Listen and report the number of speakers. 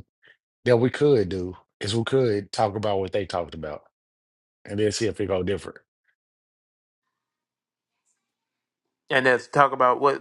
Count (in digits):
2